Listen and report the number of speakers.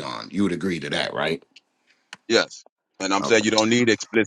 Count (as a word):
two